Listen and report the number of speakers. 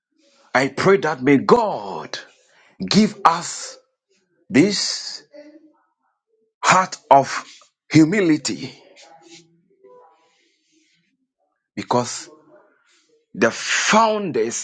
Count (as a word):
one